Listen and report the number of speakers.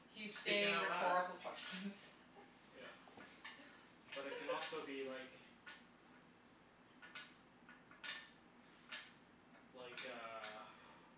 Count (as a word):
two